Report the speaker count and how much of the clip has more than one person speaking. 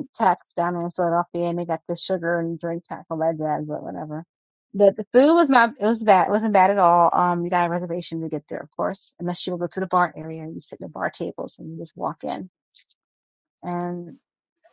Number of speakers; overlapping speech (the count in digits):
1, no overlap